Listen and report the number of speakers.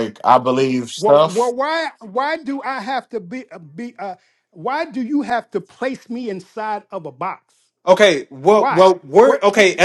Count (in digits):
3